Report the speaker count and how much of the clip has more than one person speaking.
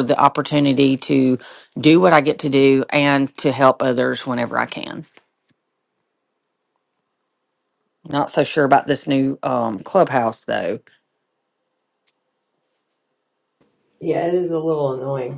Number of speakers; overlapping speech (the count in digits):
2, no overlap